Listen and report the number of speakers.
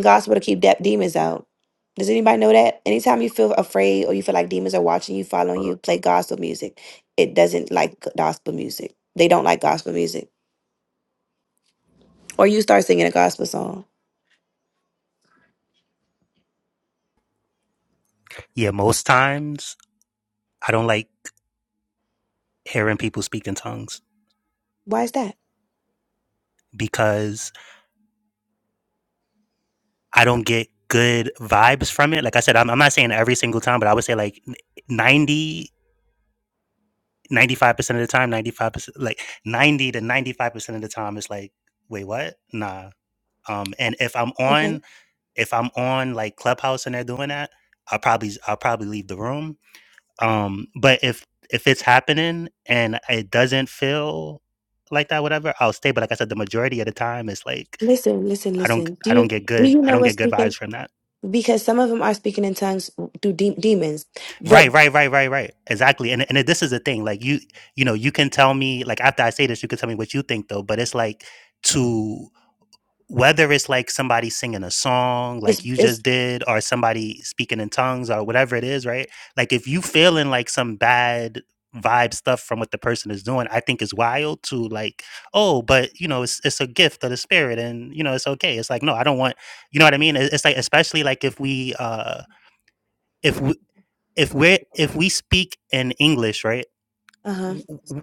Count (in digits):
2